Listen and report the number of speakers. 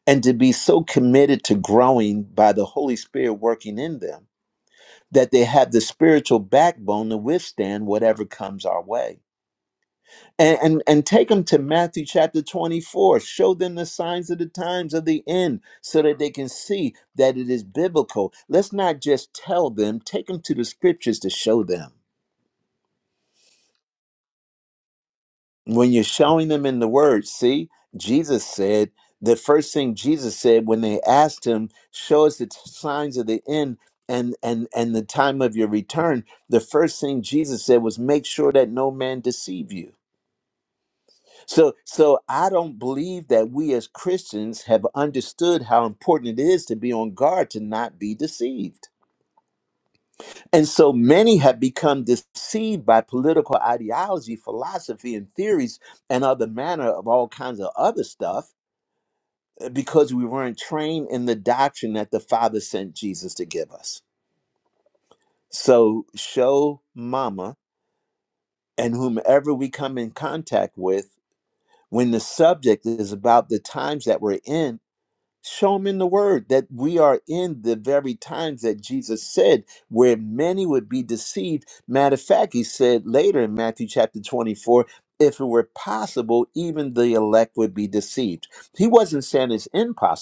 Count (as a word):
one